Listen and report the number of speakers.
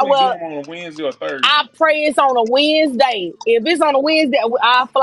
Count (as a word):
two